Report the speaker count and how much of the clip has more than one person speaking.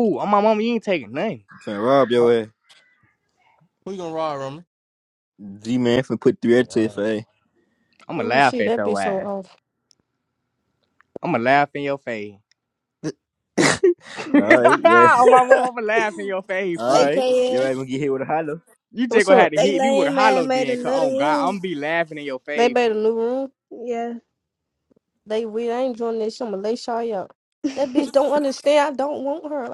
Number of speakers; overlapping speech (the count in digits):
5, about 22%